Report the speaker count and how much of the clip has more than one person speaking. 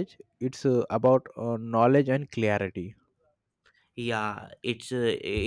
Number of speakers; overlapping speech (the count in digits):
2, no overlap